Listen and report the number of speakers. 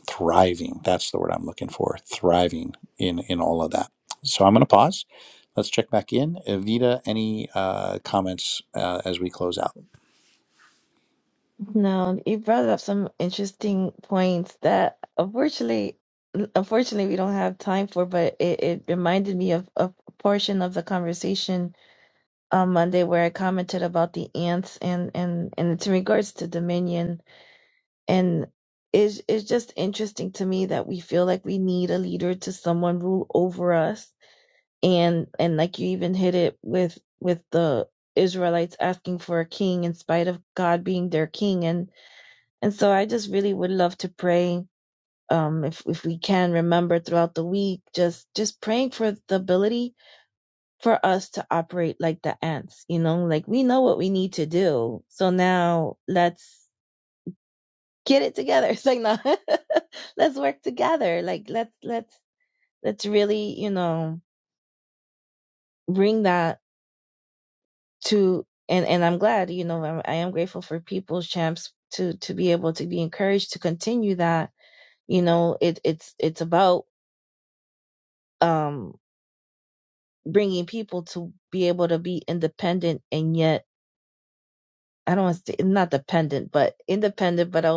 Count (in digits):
2